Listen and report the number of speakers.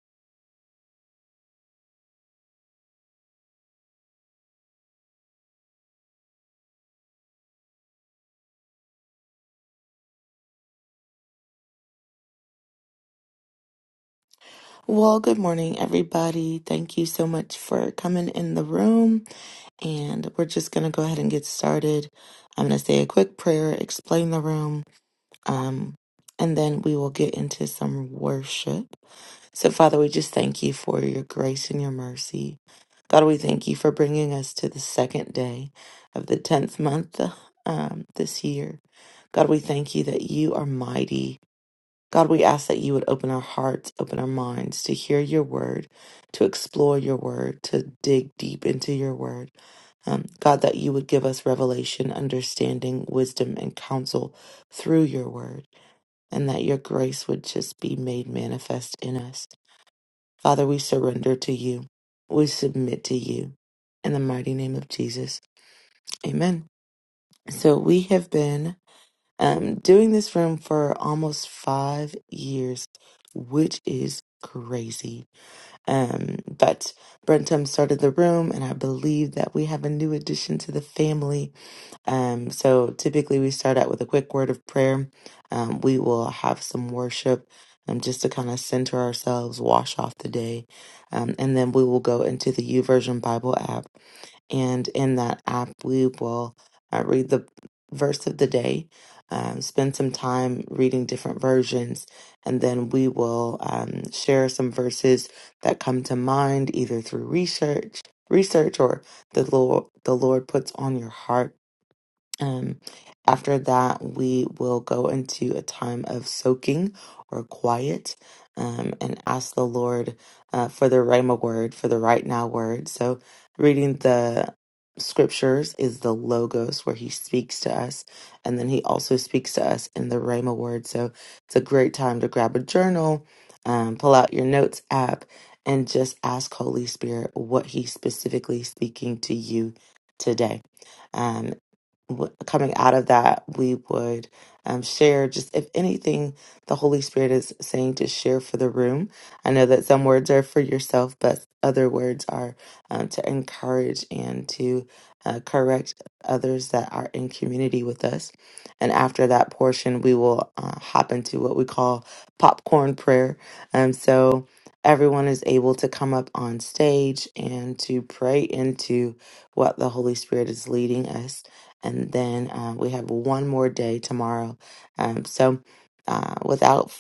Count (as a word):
one